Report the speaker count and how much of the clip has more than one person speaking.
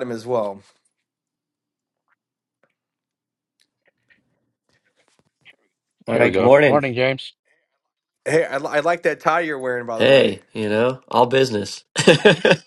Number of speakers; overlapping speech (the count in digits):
3, about 8%